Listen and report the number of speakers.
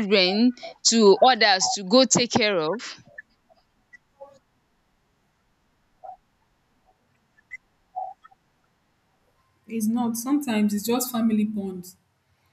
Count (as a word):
two